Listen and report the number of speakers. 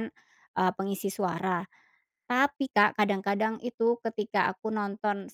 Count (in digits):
1